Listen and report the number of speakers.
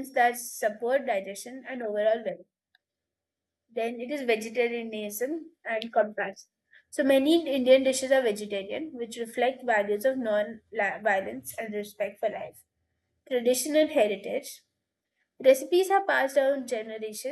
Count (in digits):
1